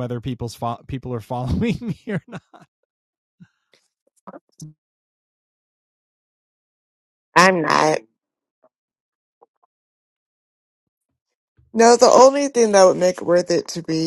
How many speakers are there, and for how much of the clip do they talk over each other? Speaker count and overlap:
2, no overlap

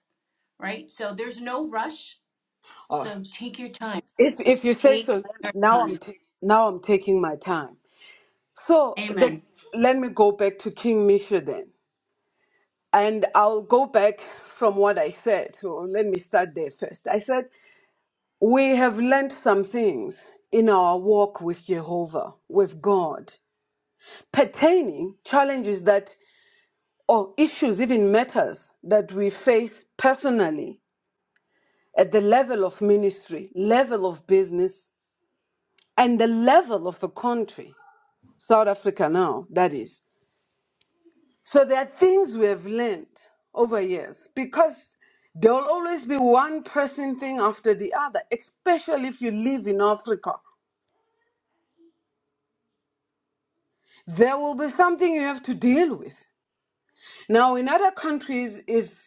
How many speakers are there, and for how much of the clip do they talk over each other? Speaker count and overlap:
2, about 3%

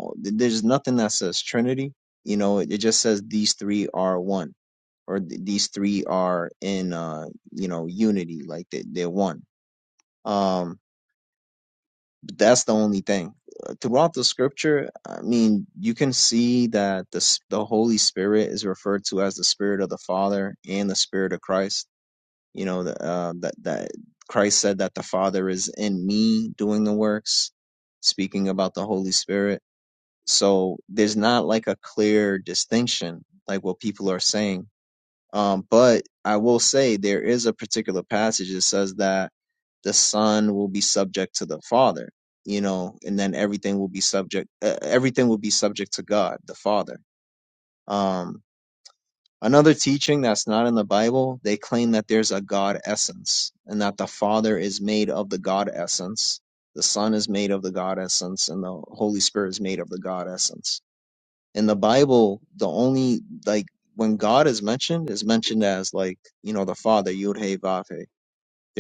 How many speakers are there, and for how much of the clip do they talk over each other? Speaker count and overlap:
1, no overlap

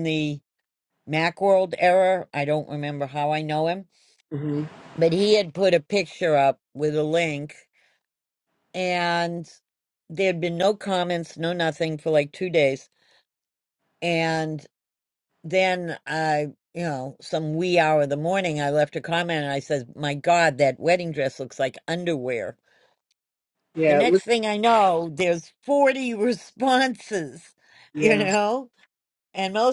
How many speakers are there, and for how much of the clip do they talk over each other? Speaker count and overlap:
2, about 2%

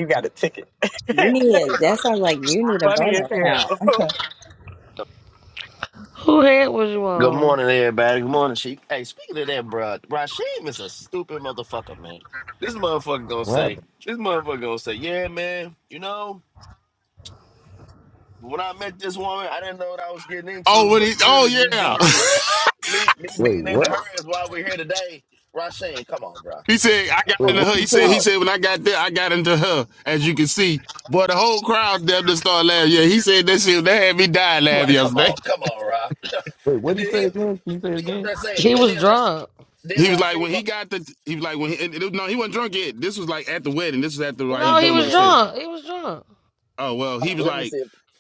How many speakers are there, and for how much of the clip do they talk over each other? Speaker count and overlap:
6, about 19%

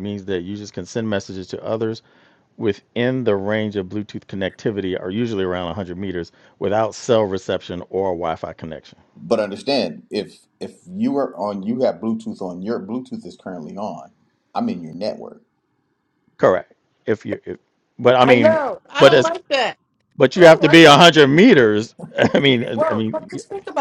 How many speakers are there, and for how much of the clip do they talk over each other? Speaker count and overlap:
3, about 7%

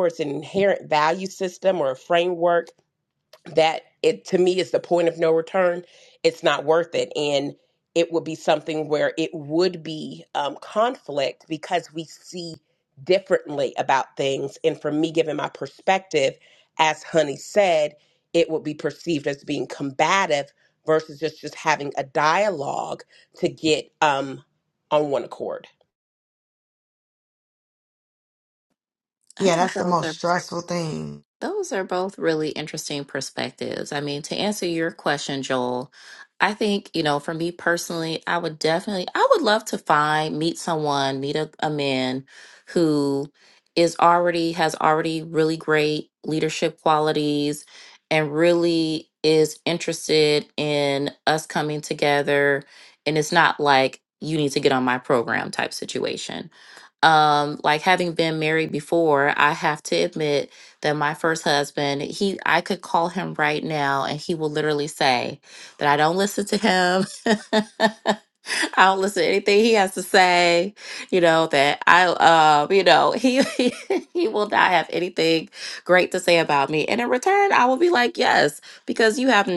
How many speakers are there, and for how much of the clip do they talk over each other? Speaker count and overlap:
3, about 1%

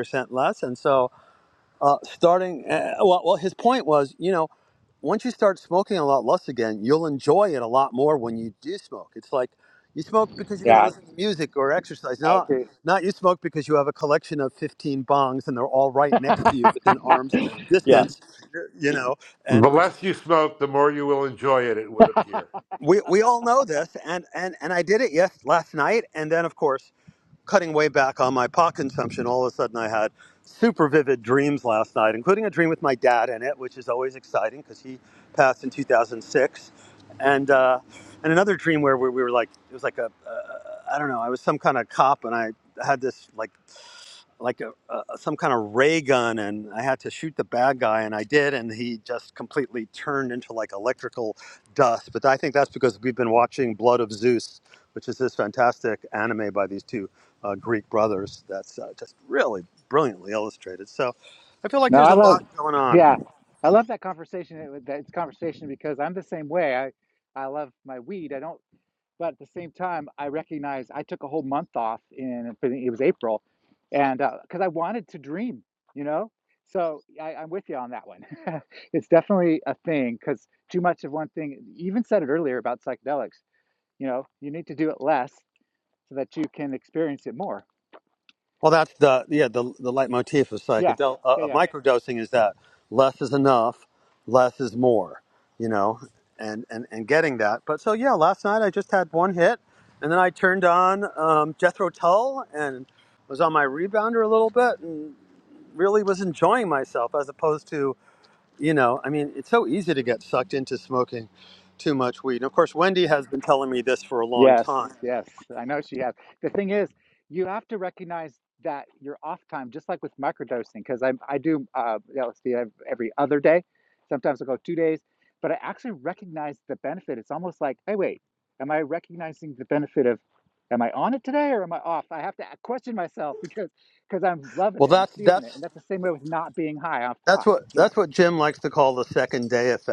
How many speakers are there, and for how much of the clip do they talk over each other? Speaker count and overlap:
3, about 3%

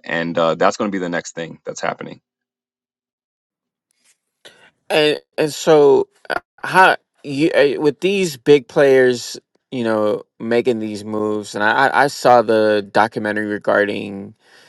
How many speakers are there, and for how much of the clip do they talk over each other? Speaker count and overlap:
2, no overlap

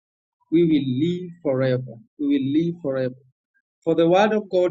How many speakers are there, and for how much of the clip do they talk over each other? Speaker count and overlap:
1, no overlap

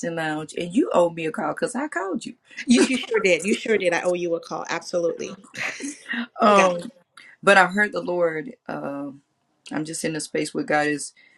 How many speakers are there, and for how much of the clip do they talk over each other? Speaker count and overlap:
2, about 2%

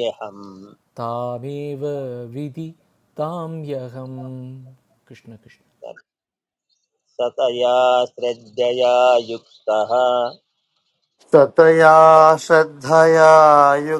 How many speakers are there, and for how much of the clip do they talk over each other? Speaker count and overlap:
3, no overlap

